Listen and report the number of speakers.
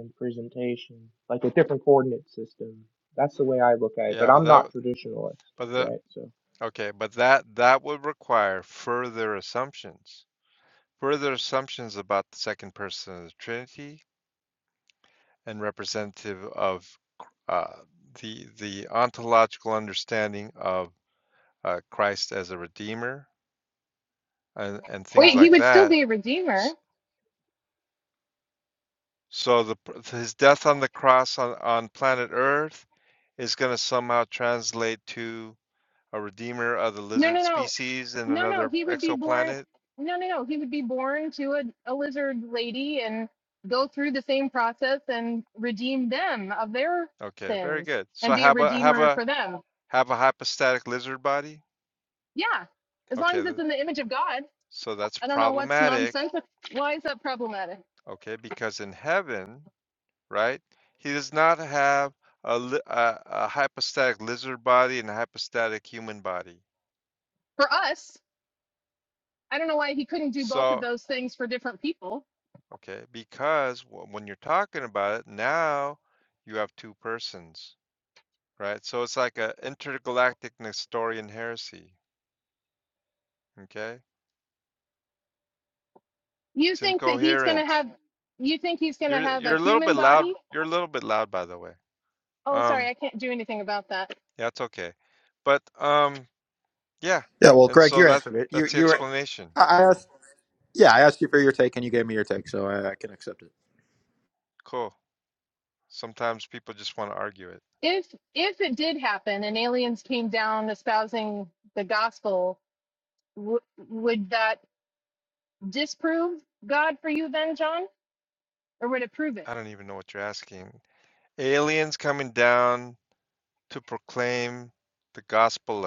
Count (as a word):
four